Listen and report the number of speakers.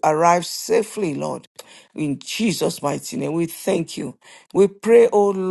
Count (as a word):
one